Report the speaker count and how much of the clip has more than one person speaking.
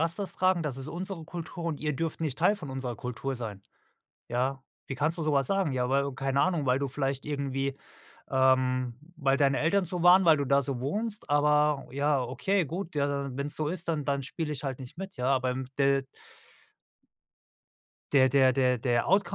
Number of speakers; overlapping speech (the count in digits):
1, no overlap